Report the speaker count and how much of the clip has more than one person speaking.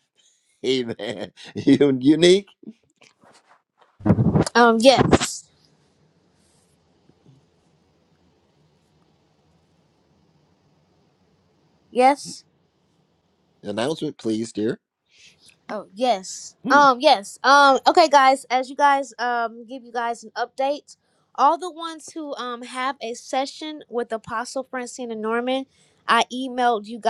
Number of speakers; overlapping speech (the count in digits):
2, no overlap